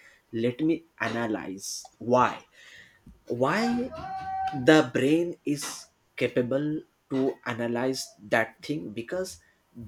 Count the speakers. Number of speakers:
one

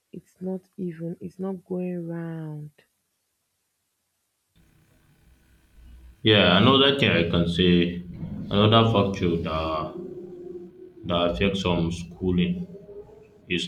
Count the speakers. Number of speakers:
two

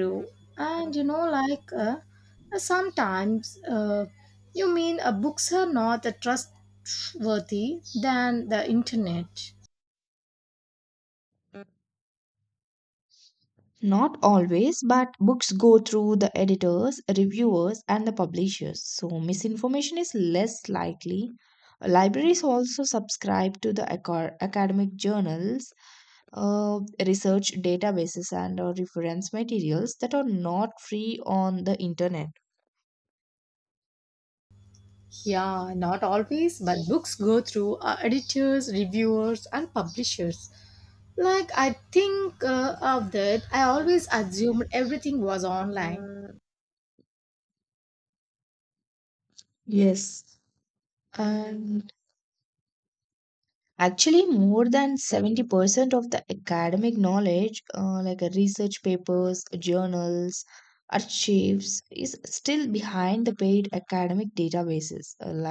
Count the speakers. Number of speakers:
two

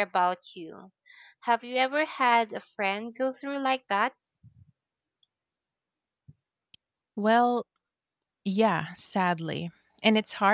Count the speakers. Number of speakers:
two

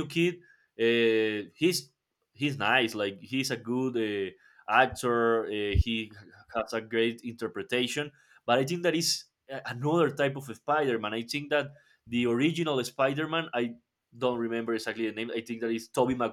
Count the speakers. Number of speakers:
one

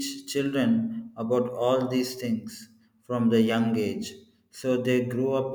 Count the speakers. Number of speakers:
one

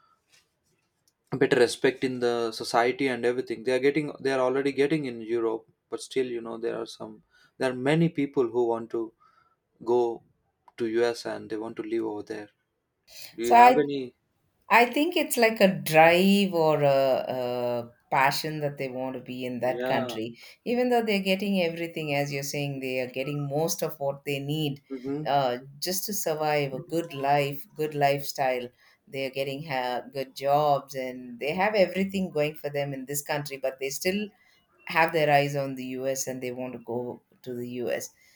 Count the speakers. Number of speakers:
two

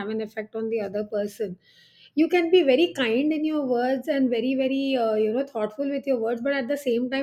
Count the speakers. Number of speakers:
one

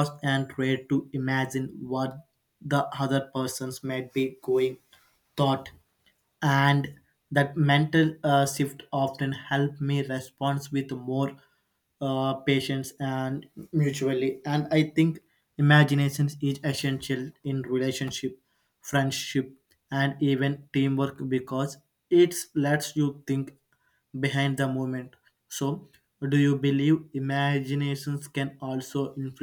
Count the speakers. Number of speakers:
one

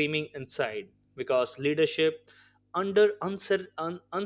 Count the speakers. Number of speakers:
one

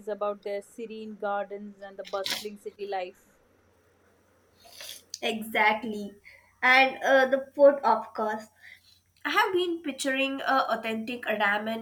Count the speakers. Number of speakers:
two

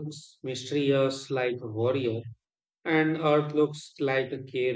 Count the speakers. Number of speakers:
one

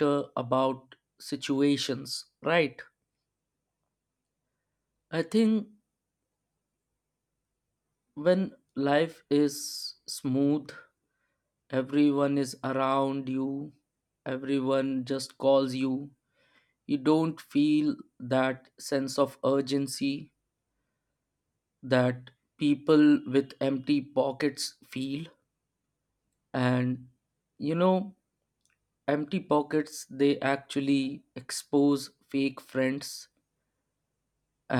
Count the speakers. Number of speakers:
one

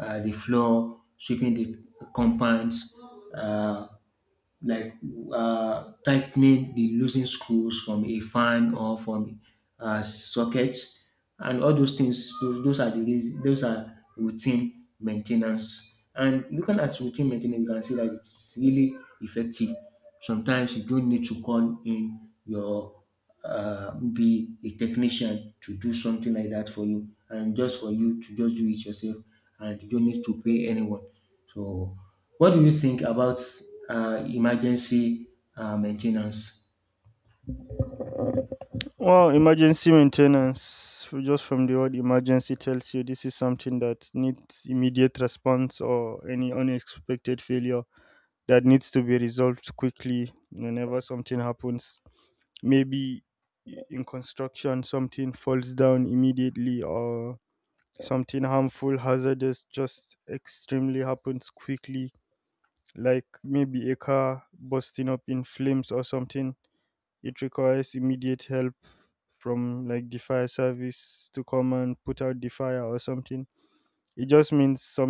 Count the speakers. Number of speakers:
two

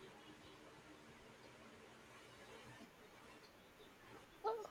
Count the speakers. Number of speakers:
zero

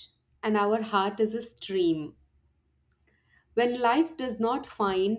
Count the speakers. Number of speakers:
one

